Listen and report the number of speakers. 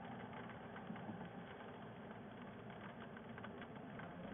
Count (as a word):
zero